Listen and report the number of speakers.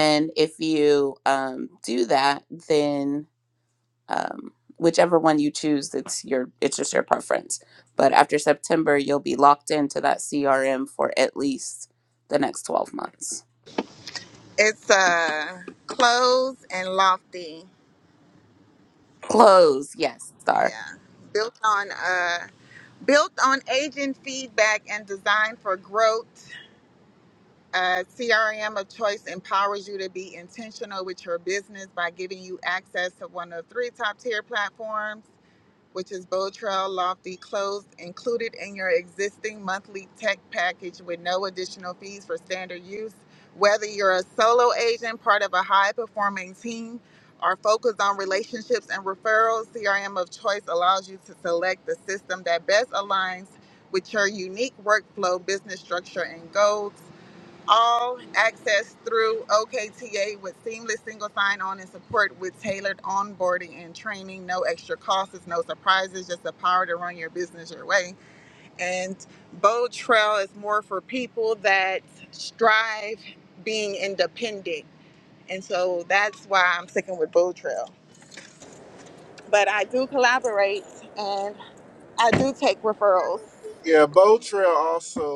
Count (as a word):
three